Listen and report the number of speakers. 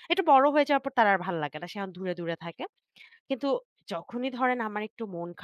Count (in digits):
1